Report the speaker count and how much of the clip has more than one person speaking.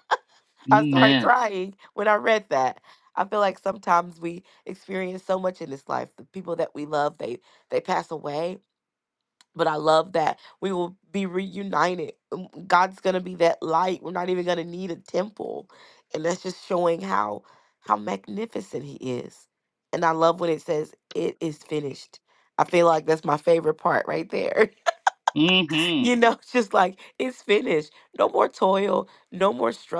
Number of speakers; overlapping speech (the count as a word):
two, about 2%